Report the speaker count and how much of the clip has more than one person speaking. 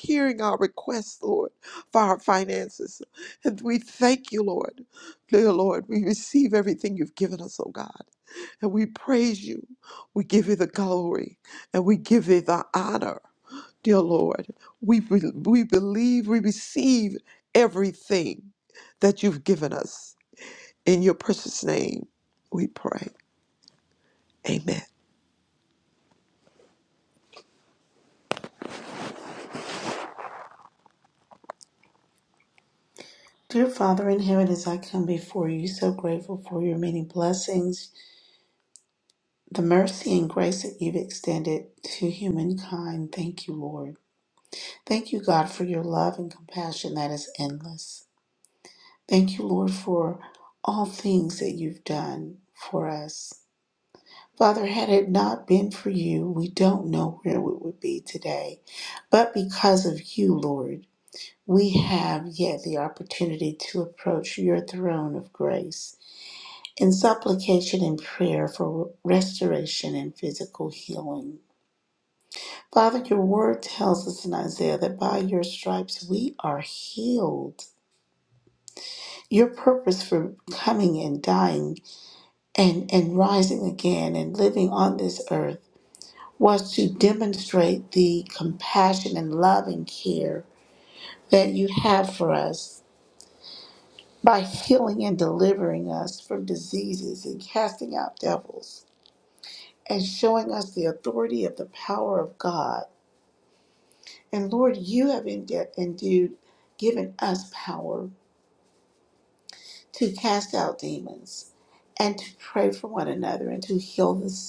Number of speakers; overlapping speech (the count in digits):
2, no overlap